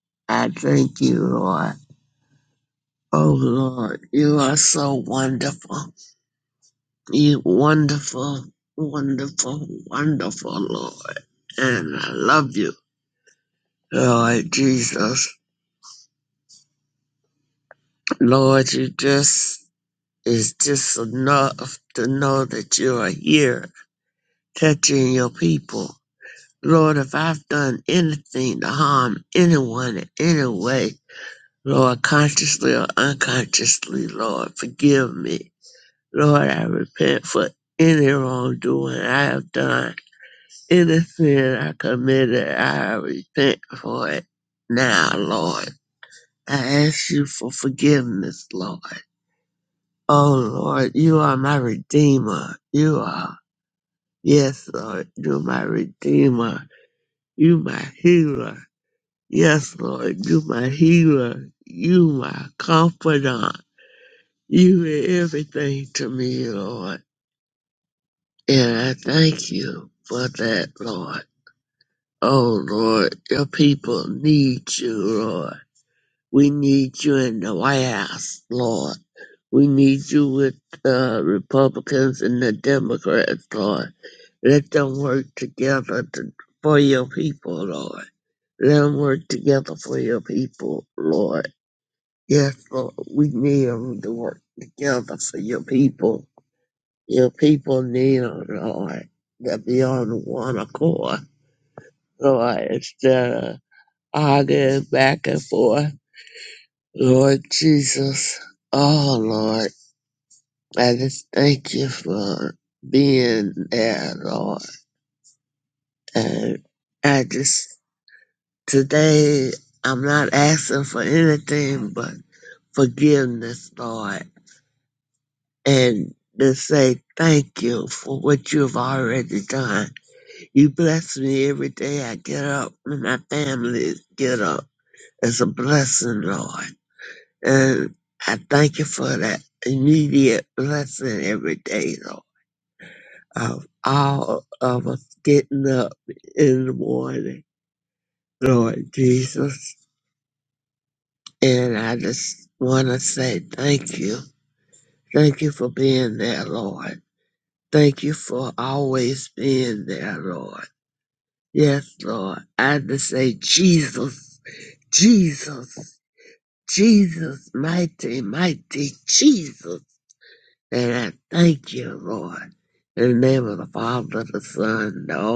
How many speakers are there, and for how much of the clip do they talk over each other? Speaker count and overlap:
one, no overlap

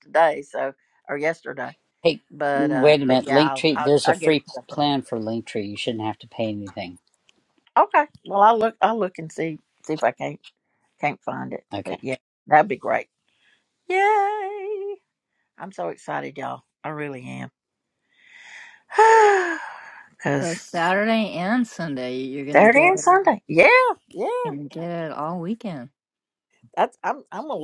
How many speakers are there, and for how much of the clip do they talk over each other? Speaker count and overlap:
three, about 10%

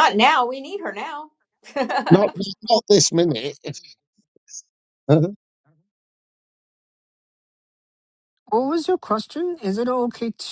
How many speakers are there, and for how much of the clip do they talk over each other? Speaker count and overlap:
three, no overlap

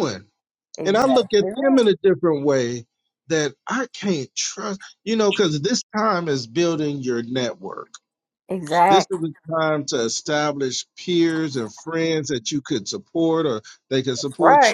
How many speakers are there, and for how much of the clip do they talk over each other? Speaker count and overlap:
two, about 11%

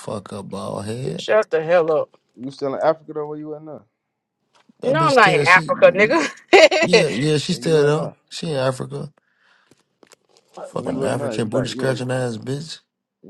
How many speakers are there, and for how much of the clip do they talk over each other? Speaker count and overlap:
three, about 25%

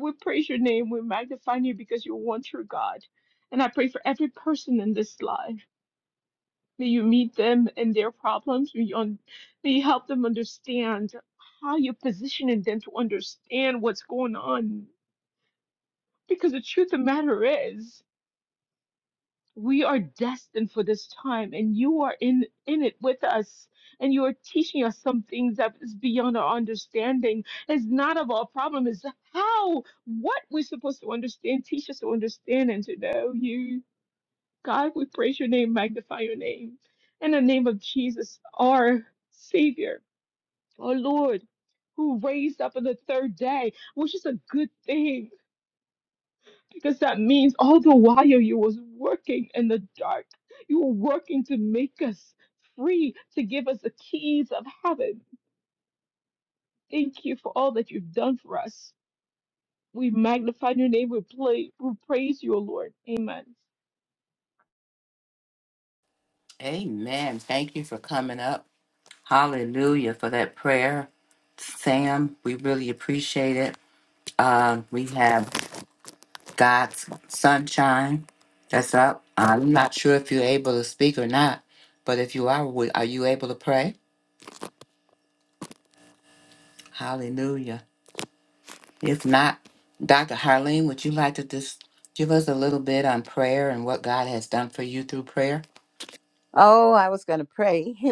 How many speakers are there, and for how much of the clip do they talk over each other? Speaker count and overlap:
three, no overlap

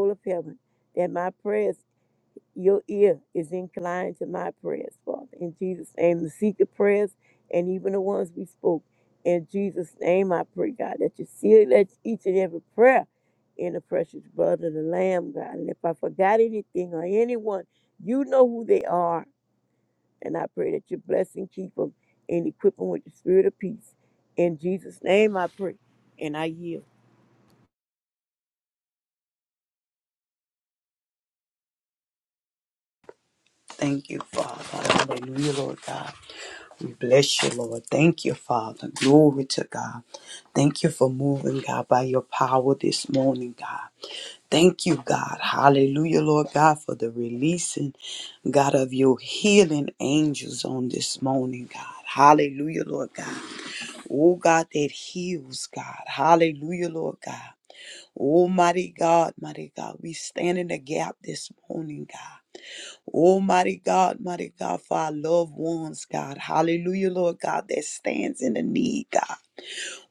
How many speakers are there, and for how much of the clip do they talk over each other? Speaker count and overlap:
two, no overlap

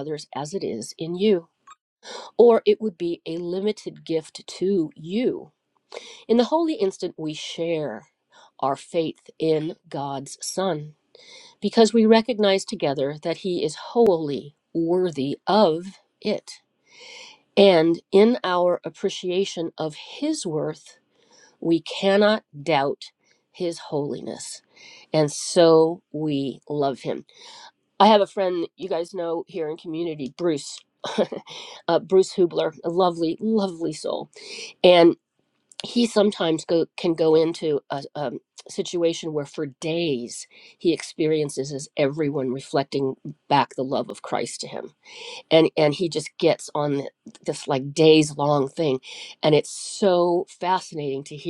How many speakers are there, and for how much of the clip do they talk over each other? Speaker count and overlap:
one, no overlap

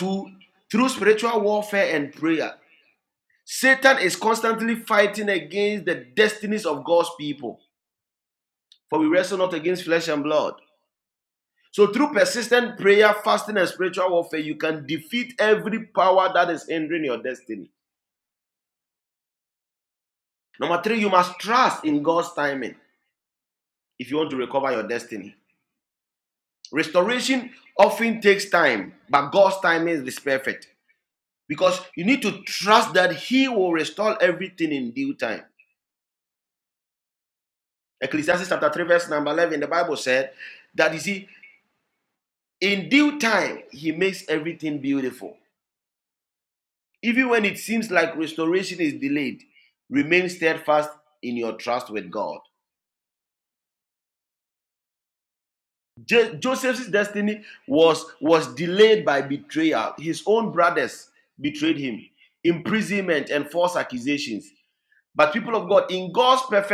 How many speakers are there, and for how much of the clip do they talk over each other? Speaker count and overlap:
one, no overlap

